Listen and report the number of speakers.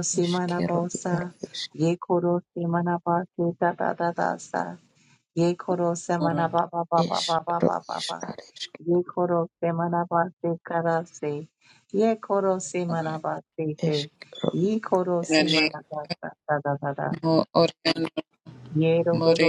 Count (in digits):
3